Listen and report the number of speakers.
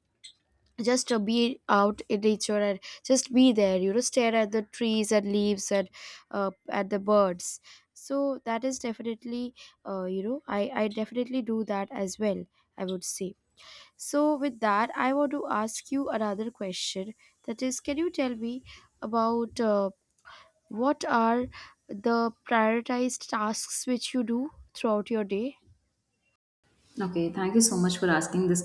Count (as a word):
two